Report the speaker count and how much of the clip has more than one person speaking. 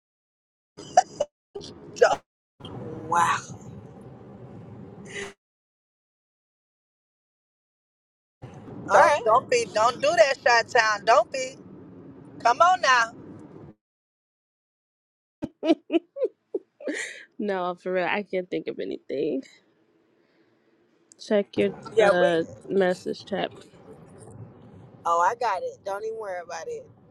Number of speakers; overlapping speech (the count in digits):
3, about 4%